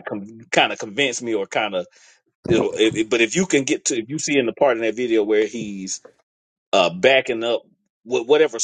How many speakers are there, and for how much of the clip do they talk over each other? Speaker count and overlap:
one, no overlap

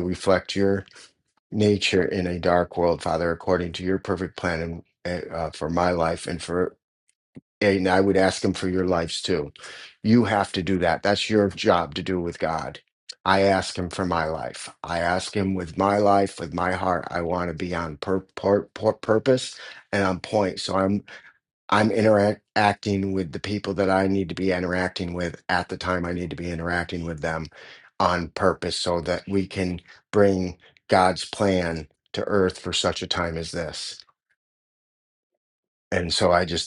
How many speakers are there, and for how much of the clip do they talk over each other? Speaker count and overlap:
one, no overlap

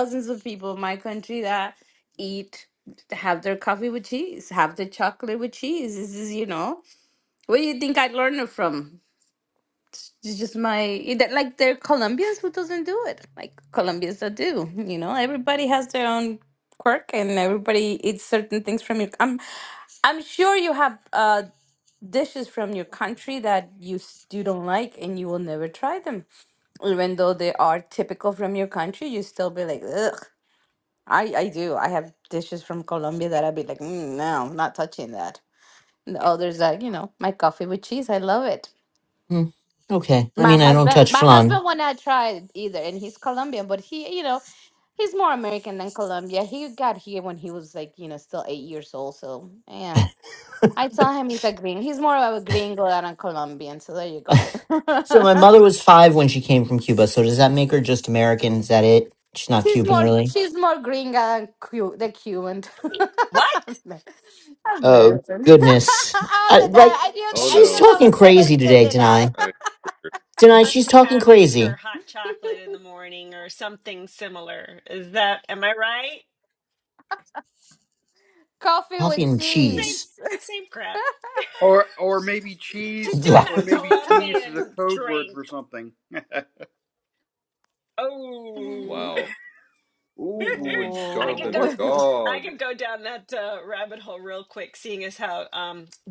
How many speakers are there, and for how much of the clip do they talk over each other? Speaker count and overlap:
five, about 12%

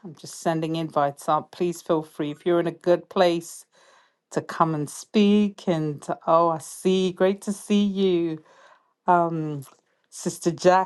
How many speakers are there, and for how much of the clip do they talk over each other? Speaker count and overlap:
one, no overlap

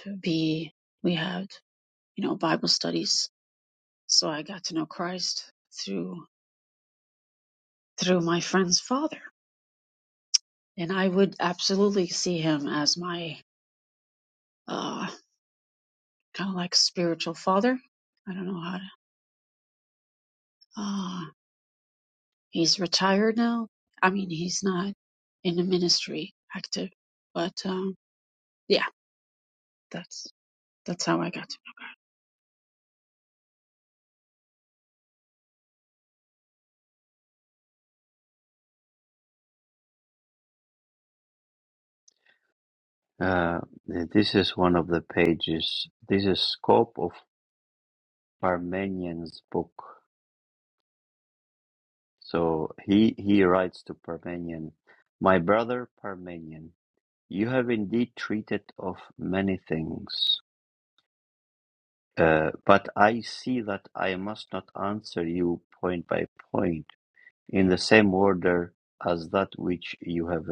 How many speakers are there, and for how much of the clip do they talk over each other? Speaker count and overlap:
two, no overlap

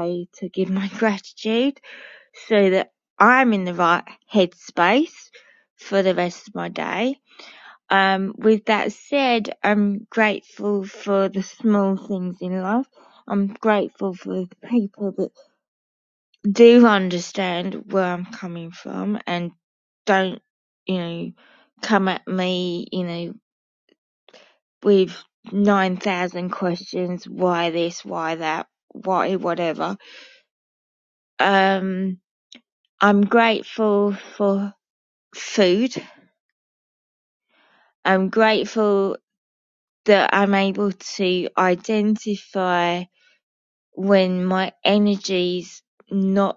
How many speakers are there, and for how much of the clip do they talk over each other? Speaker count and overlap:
one, no overlap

